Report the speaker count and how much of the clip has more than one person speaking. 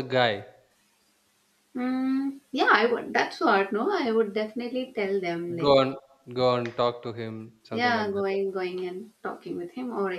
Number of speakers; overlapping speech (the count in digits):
2, about 8%